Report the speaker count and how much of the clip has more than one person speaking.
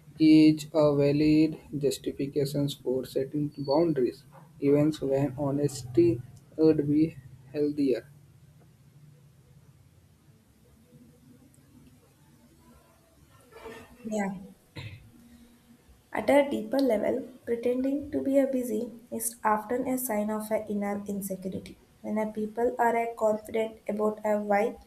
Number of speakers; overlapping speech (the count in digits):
2, no overlap